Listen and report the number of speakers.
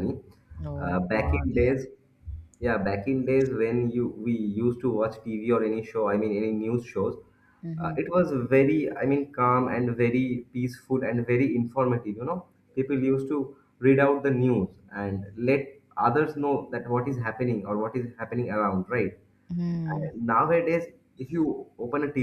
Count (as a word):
two